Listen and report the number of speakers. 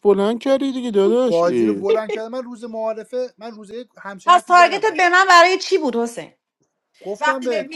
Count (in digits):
3